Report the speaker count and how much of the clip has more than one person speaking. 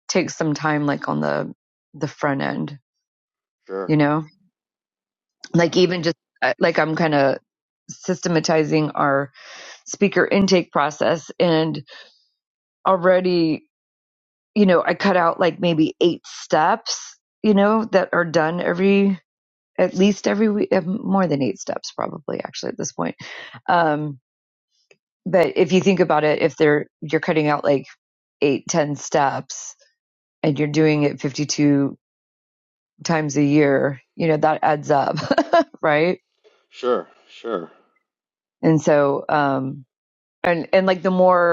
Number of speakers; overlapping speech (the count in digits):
2, about 1%